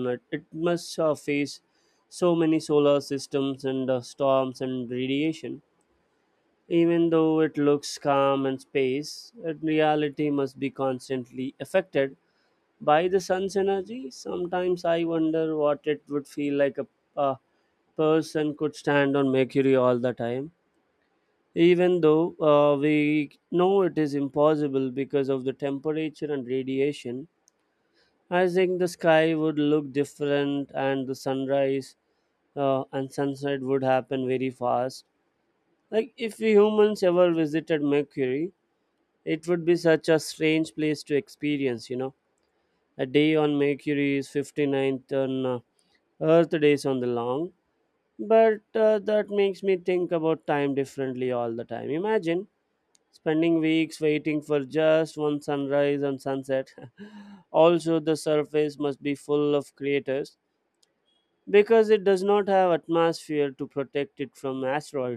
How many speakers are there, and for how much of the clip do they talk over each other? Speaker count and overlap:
1, no overlap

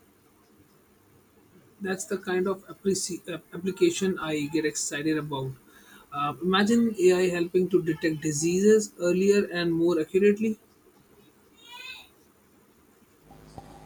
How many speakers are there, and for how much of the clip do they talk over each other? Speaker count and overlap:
1, no overlap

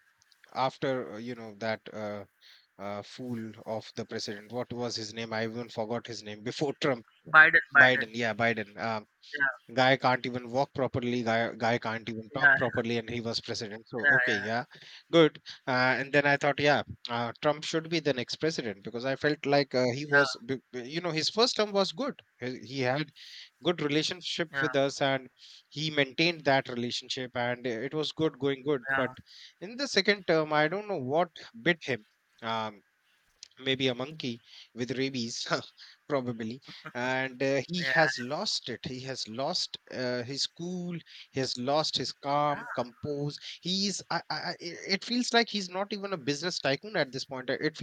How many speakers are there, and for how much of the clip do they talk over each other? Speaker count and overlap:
2, about 4%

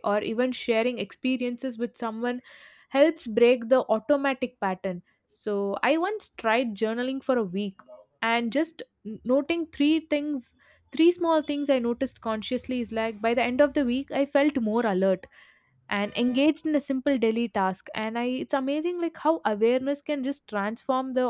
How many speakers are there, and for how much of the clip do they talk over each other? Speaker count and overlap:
1, no overlap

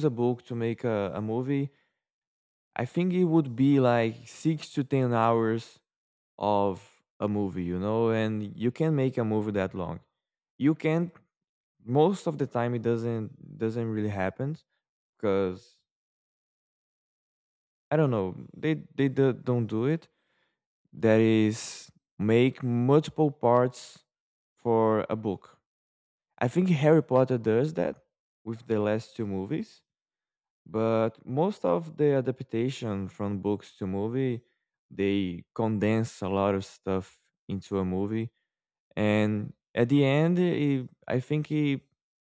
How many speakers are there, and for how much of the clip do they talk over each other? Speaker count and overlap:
1, no overlap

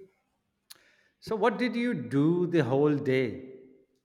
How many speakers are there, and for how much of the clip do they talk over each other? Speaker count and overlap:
1, no overlap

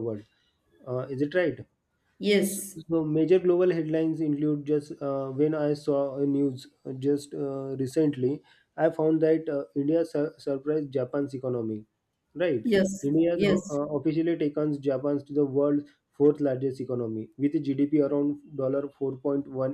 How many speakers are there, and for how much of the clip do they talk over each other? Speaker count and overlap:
2, about 2%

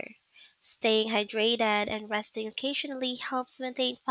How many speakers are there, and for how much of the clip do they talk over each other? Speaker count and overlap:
1, no overlap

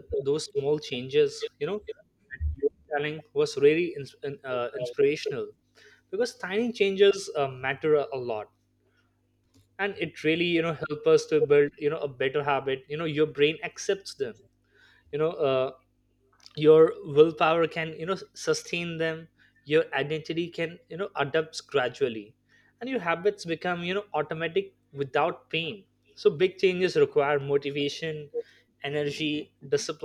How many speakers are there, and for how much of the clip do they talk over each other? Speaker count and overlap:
1, no overlap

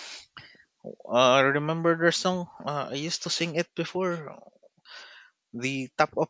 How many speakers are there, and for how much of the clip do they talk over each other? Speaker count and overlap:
1, no overlap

